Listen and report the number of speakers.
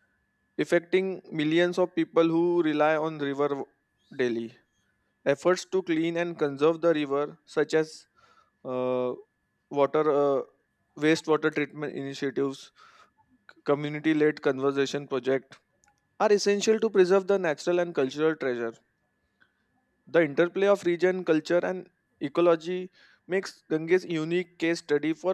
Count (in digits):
1